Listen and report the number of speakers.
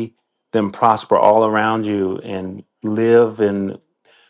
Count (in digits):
1